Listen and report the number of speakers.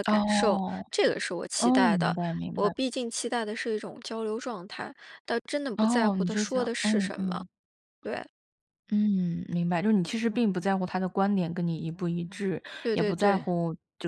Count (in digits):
2